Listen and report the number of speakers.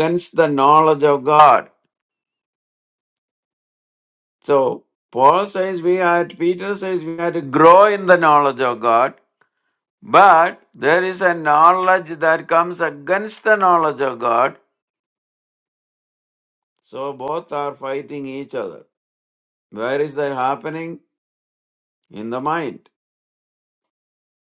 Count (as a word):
one